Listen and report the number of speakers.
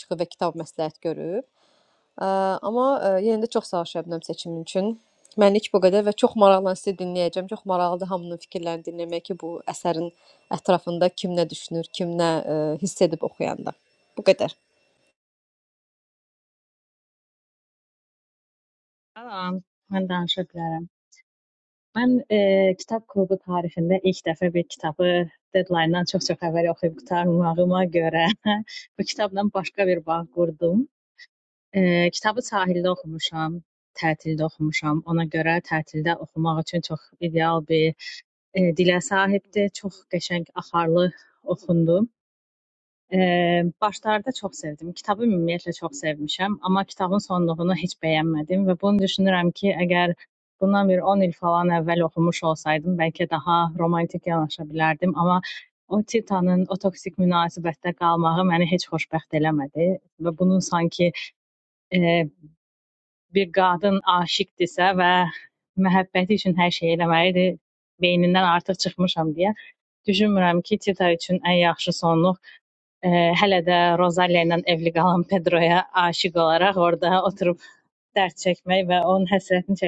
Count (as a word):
two